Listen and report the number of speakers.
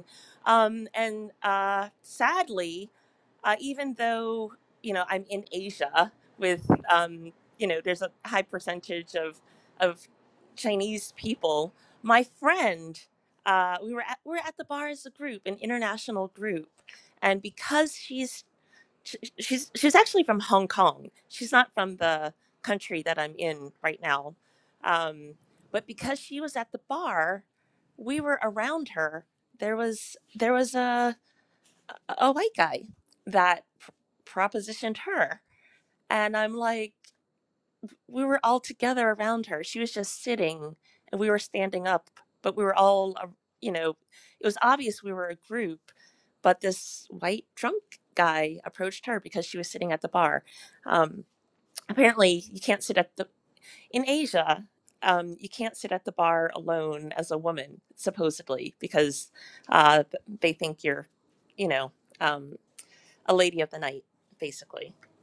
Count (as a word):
one